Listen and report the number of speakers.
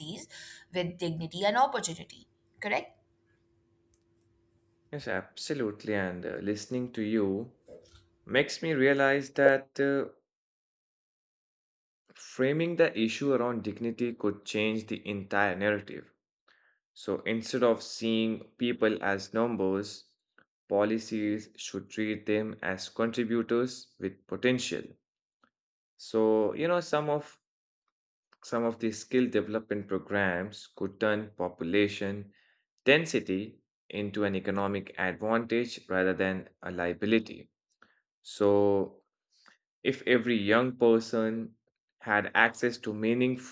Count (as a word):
two